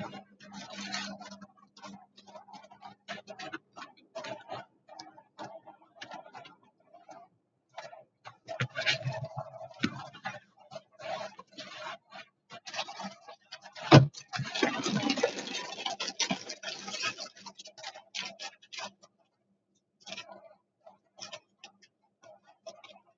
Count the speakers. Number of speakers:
zero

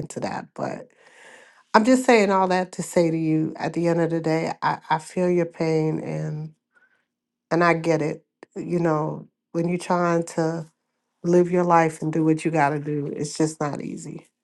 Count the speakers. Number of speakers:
one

